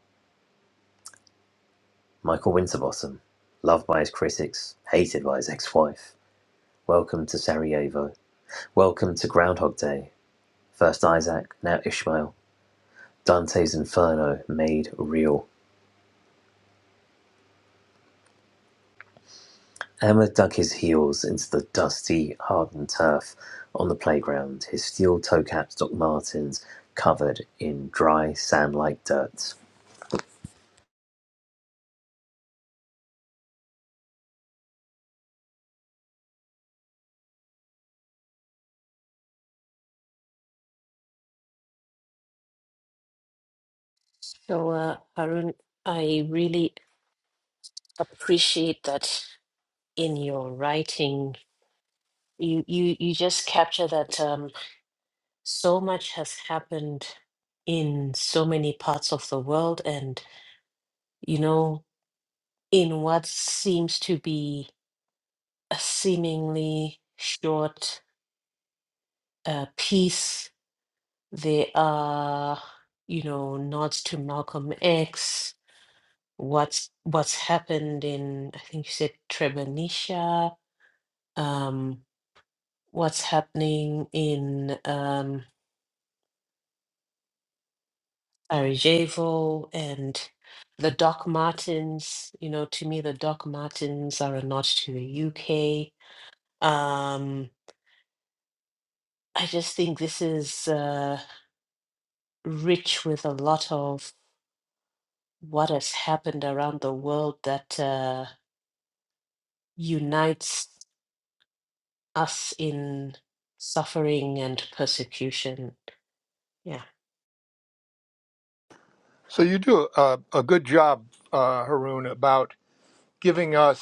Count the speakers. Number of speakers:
3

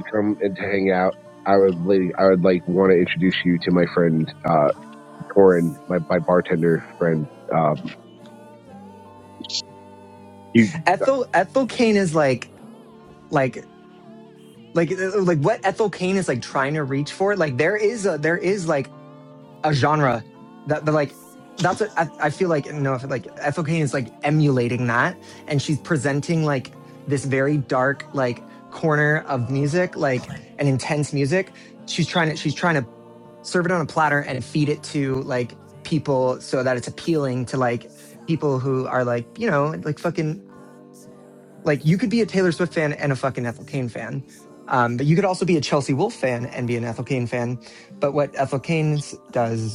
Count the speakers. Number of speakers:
2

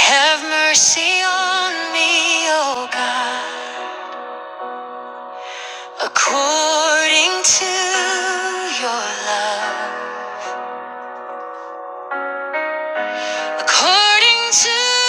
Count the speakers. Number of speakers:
1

